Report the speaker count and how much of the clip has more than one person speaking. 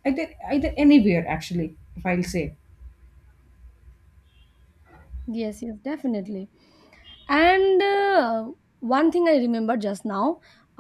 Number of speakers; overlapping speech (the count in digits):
2, no overlap